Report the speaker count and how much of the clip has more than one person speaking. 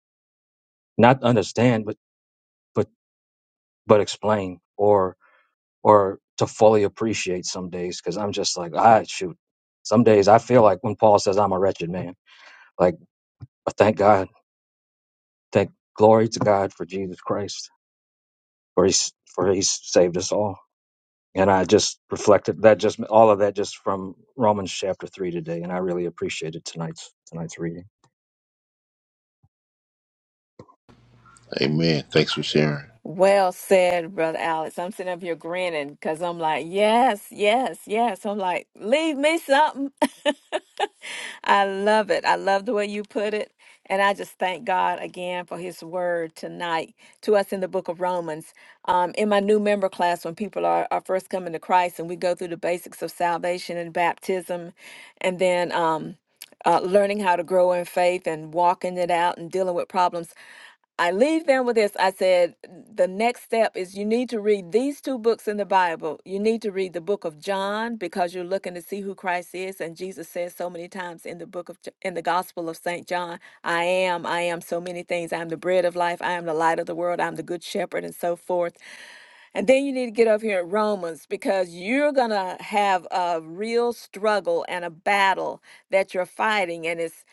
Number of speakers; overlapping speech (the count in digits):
3, no overlap